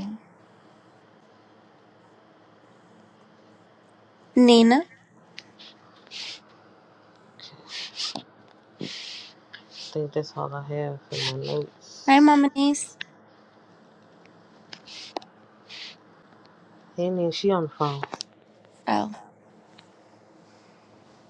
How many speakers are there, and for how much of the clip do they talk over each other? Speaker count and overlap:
two, under 1%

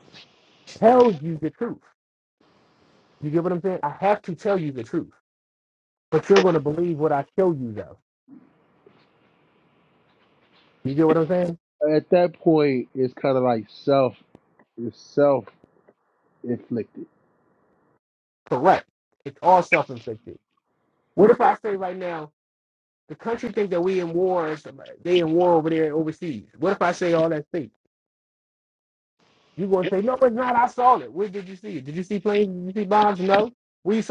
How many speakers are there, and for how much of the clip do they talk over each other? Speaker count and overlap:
two, no overlap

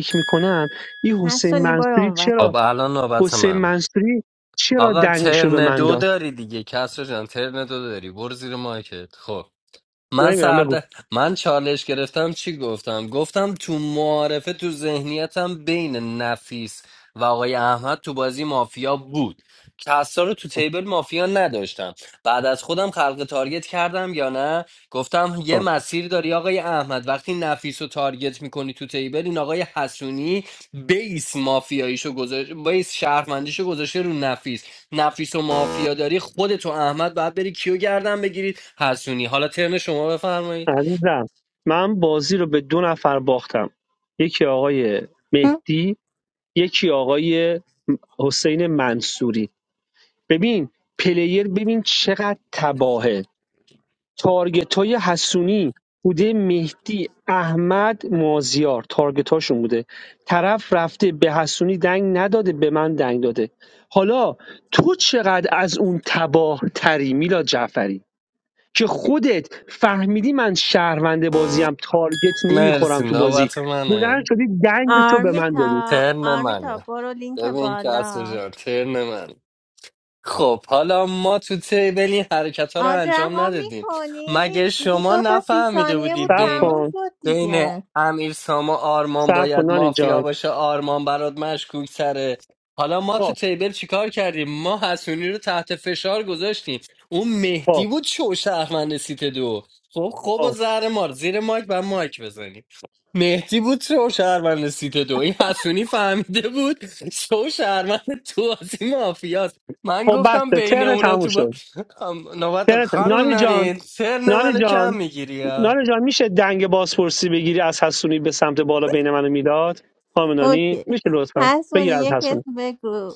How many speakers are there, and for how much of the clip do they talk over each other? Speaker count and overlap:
three, about 15%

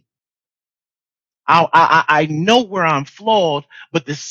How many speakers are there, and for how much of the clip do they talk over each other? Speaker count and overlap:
one, no overlap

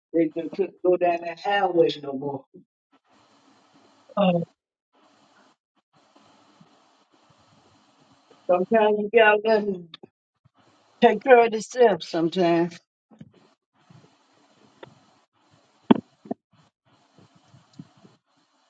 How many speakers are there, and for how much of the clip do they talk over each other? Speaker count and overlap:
one, no overlap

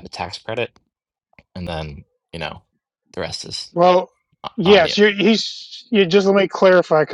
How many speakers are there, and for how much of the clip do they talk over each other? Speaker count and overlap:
two, about 6%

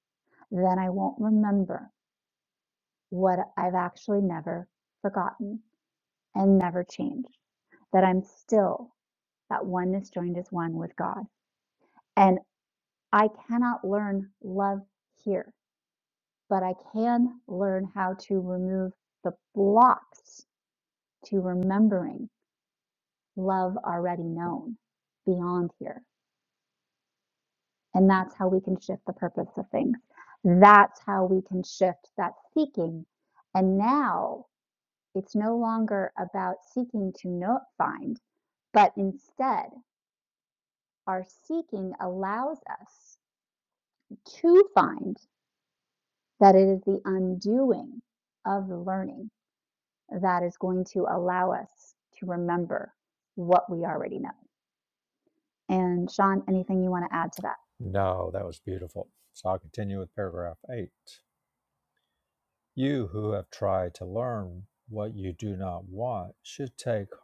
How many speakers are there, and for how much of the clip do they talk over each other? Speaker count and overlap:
two, no overlap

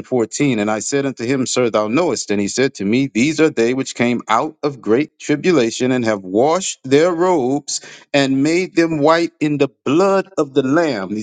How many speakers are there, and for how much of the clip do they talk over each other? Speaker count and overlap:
one, no overlap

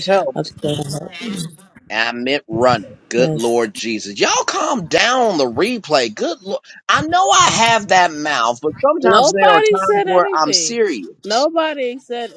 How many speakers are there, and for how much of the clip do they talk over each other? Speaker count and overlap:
two, about 19%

